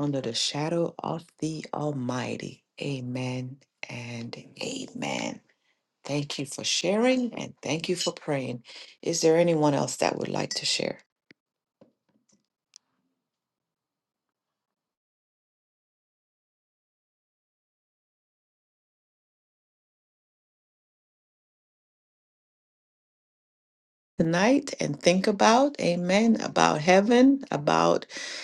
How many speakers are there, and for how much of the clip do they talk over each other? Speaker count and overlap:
one, no overlap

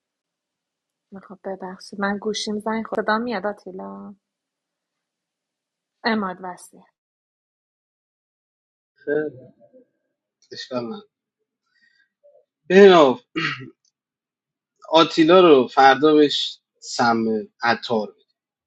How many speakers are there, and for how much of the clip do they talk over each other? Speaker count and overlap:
two, no overlap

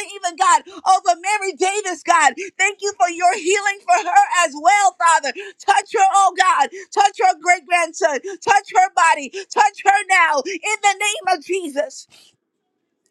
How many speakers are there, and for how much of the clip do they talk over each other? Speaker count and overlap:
one, no overlap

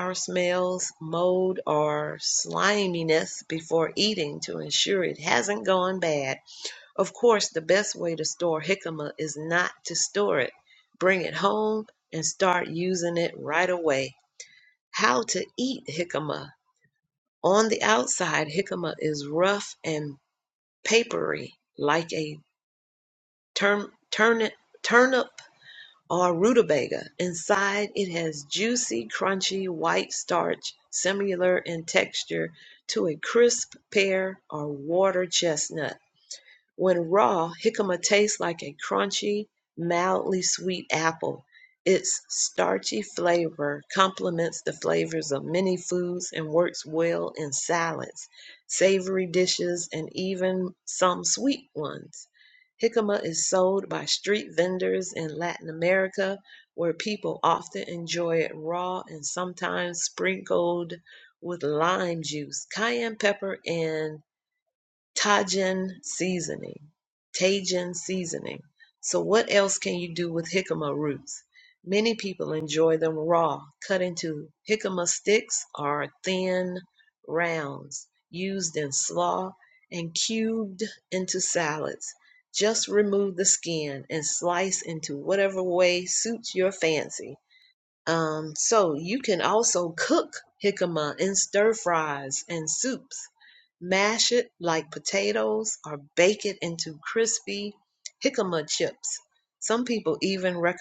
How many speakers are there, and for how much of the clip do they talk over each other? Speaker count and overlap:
one, no overlap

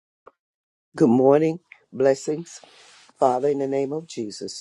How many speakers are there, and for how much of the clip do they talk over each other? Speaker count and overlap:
one, no overlap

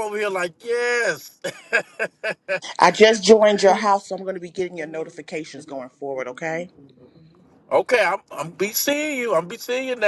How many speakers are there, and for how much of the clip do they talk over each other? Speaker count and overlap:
two, no overlap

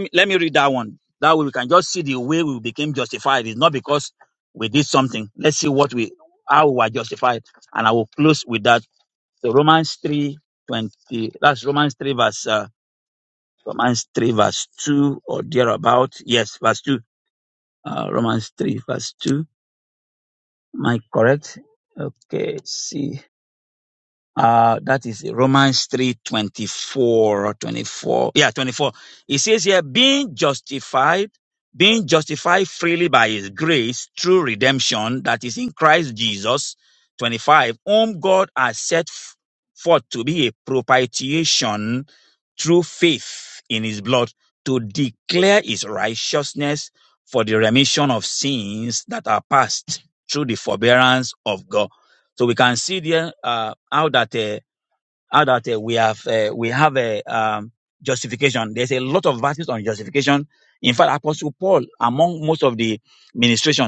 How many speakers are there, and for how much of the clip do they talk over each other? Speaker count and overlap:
one, no overlap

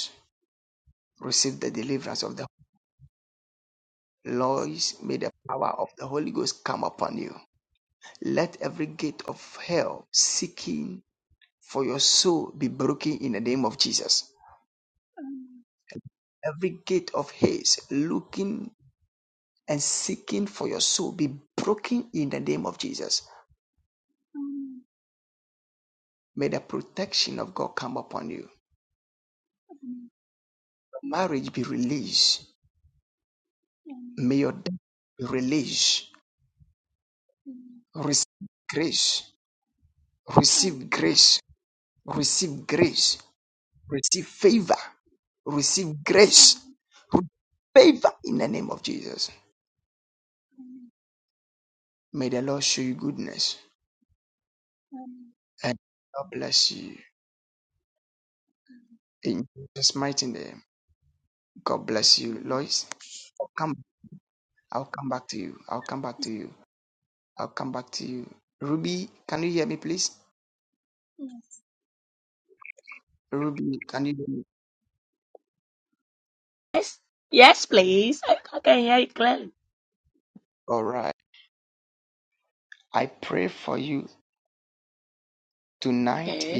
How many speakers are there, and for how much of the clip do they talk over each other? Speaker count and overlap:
three, about 2%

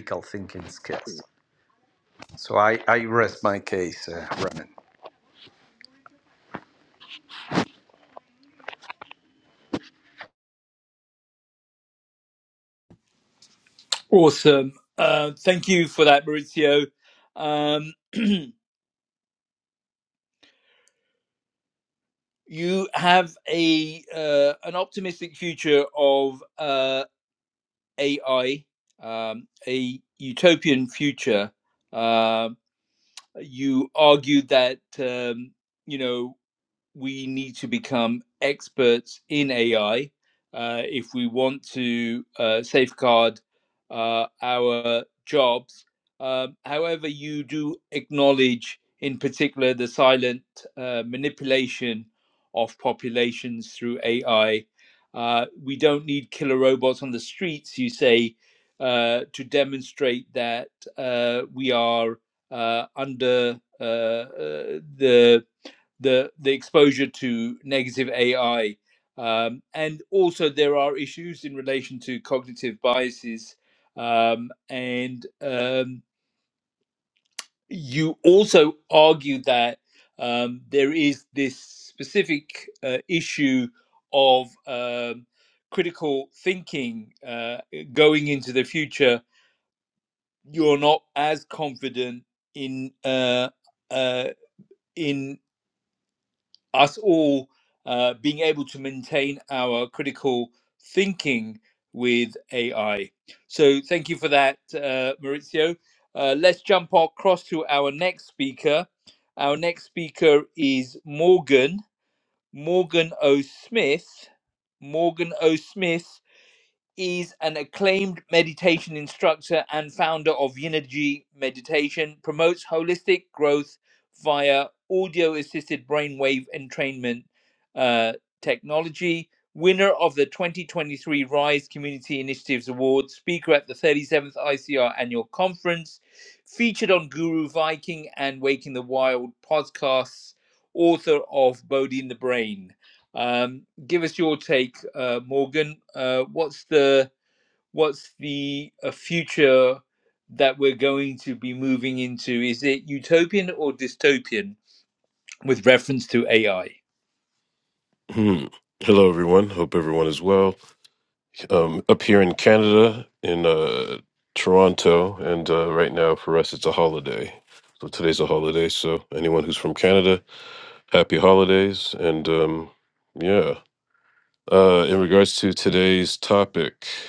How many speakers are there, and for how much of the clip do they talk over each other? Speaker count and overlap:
three, no overlap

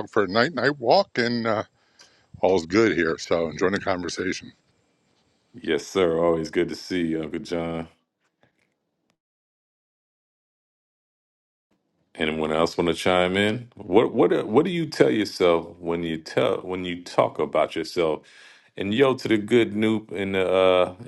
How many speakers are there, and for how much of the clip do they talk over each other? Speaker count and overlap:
two, no overlap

